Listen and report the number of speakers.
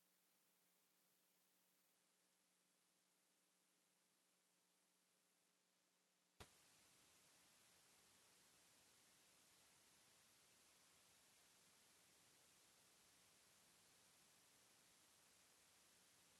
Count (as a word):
zero